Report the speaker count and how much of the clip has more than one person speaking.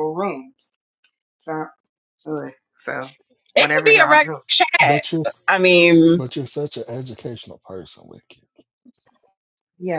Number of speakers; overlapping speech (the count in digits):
3, about 11%